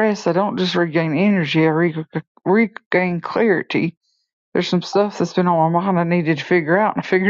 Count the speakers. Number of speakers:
1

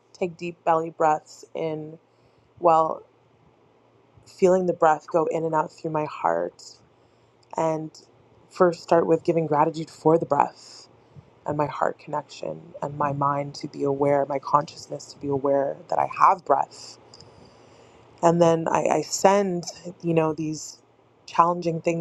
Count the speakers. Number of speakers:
1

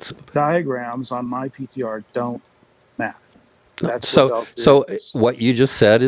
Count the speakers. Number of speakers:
2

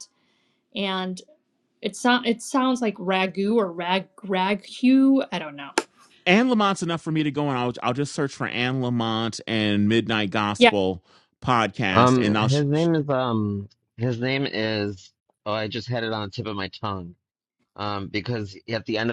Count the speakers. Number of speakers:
3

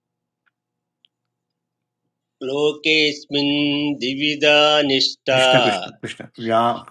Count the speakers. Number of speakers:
2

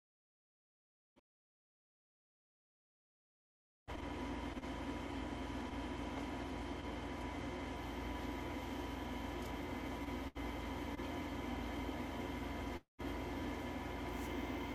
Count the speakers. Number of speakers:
0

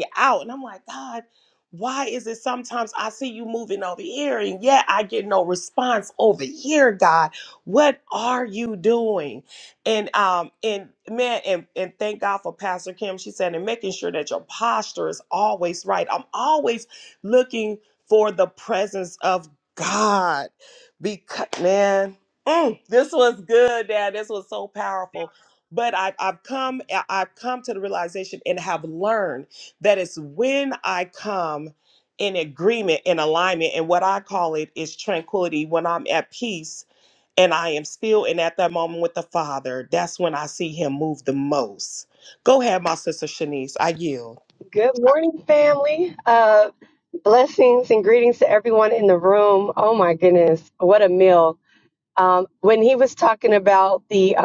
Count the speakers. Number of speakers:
2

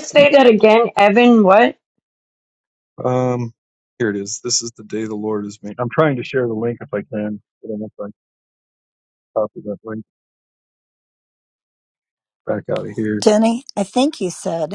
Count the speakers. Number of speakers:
3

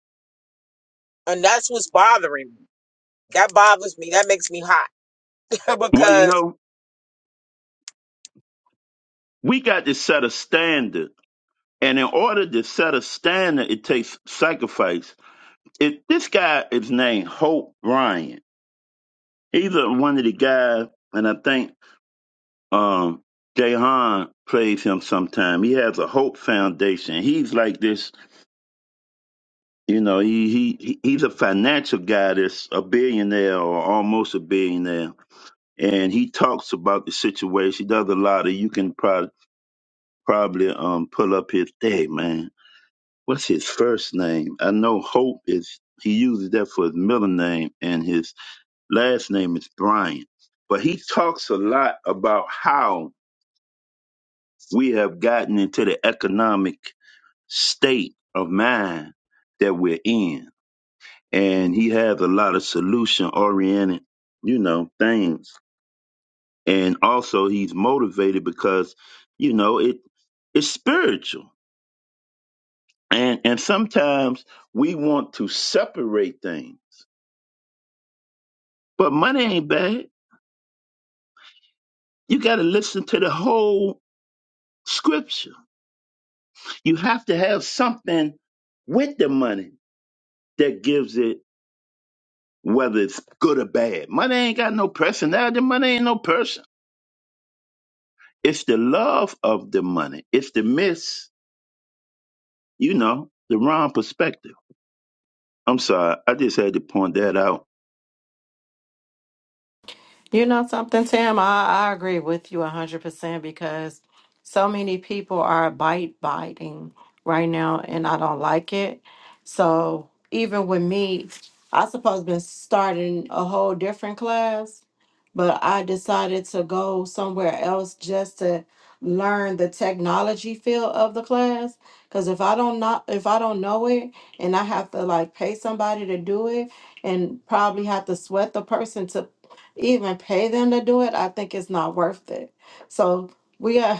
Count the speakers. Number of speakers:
3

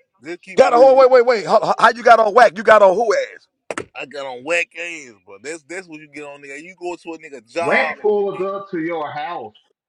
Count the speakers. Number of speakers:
3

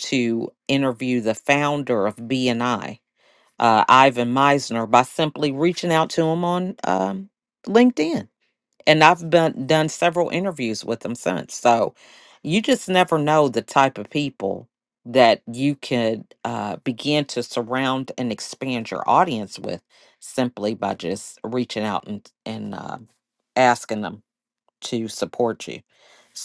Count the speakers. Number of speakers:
1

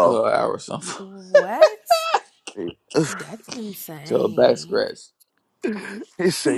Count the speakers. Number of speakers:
3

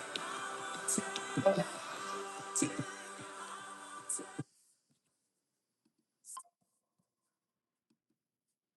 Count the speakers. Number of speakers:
0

